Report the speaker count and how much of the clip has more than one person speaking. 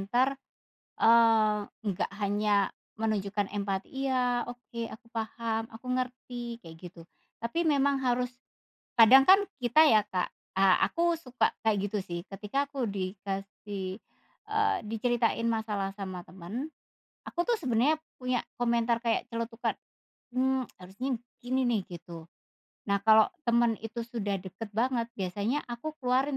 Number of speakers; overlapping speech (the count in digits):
1, no overlap